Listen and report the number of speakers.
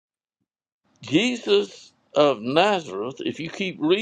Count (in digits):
1